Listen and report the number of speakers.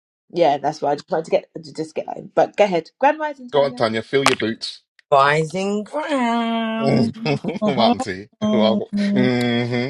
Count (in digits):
3